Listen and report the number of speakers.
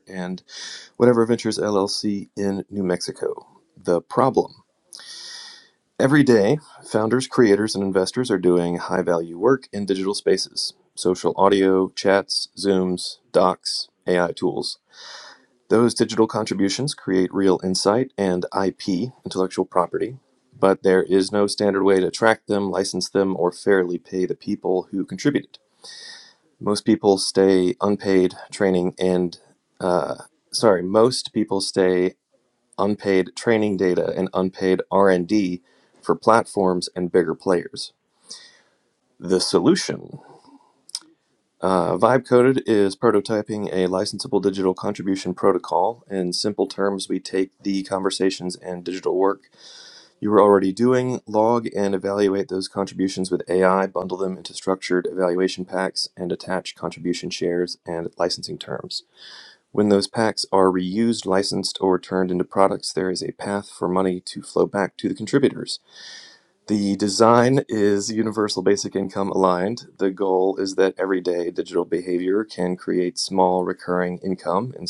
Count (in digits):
1